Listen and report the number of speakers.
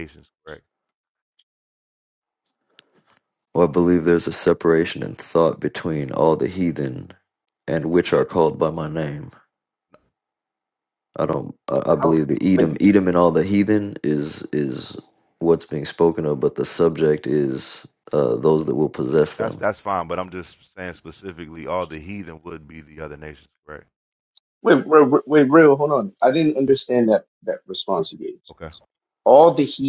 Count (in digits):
3